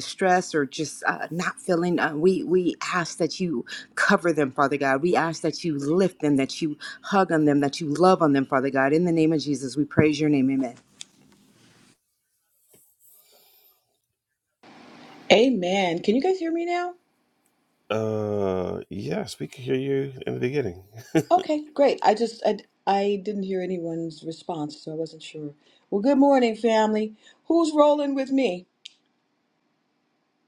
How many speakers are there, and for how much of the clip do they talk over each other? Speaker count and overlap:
three, no overlap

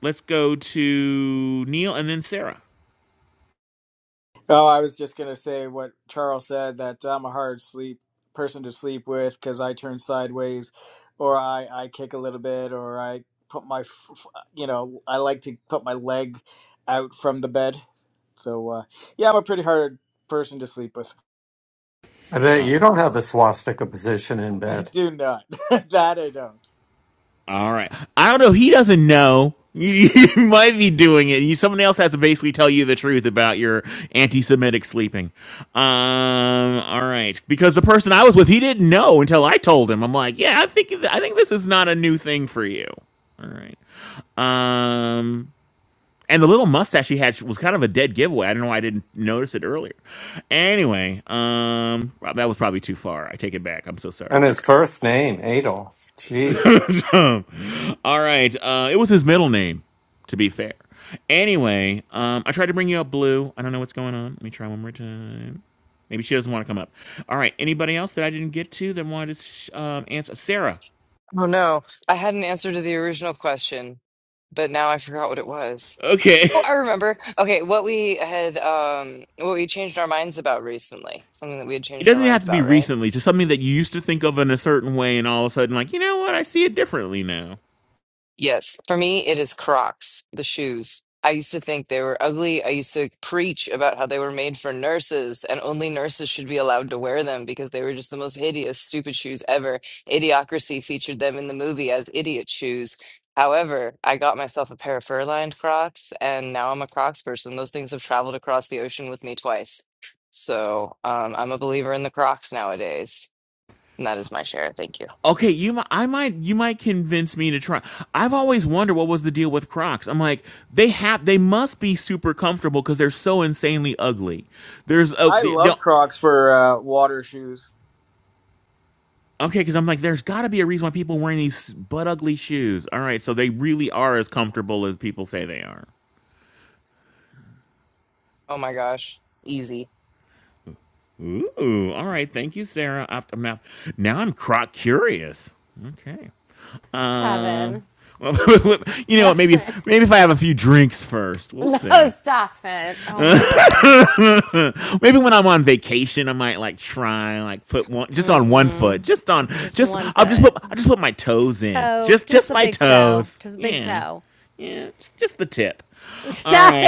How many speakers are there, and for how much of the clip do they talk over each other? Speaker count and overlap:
five, about 3%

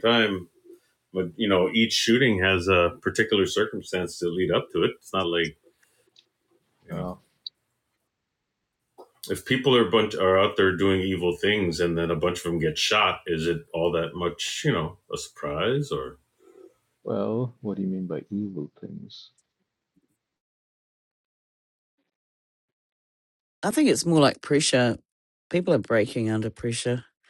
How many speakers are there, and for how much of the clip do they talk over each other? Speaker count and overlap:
three, about 1%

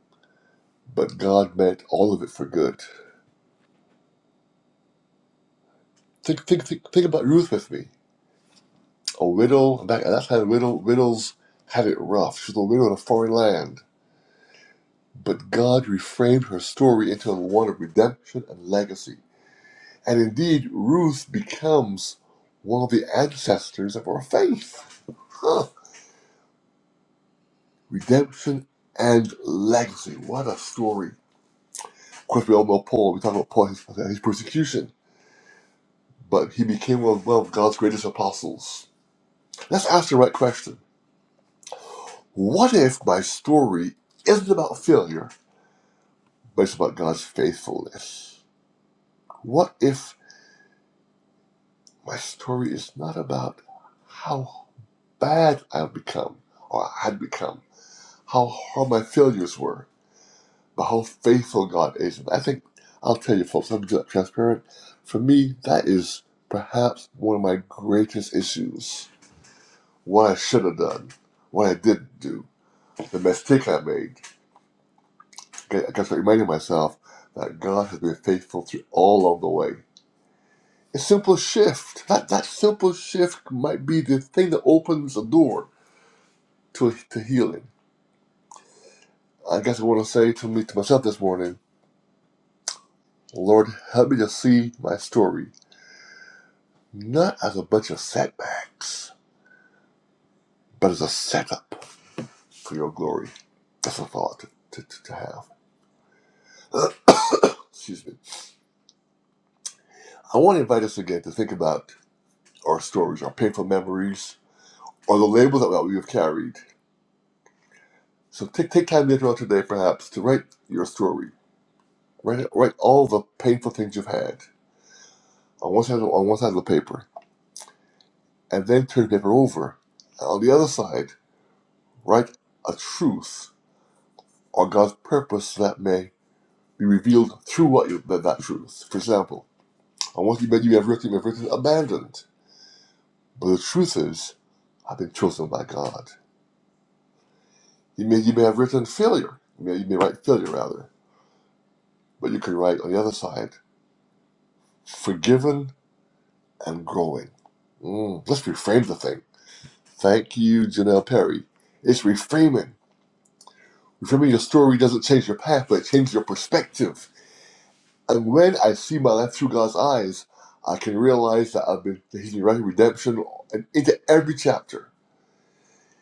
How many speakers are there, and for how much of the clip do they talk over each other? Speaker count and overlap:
one, no overlap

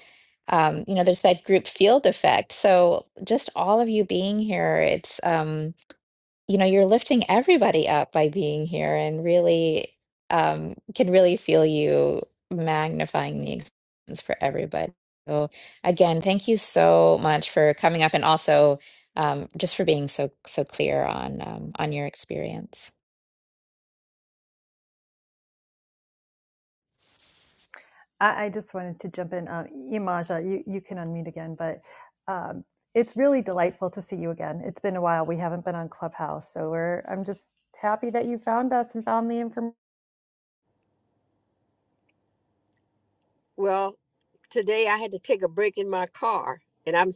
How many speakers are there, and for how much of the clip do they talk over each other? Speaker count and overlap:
three, no overlap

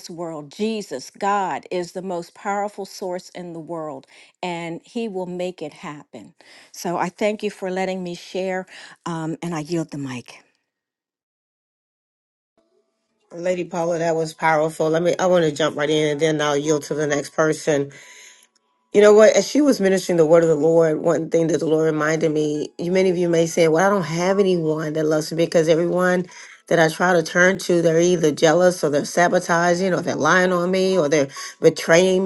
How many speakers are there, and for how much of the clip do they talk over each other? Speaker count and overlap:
two, no overlap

